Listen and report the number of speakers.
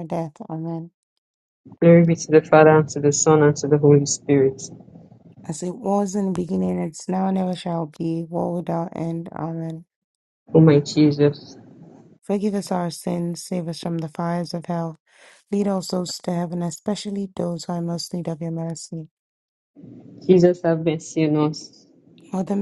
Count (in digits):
2